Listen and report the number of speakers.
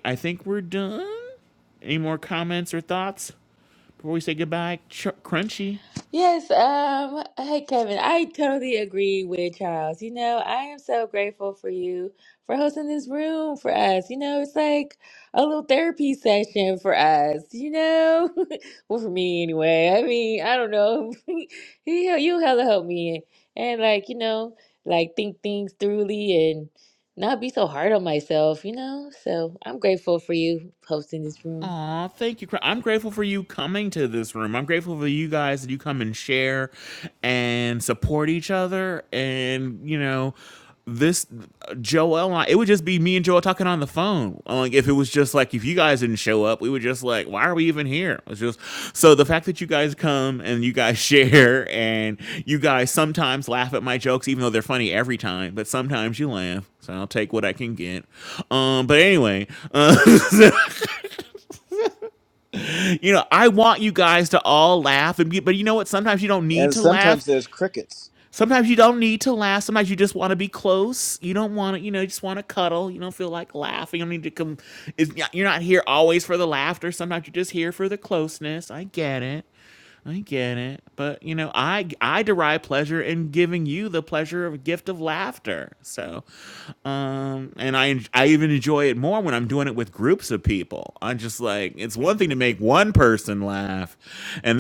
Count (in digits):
3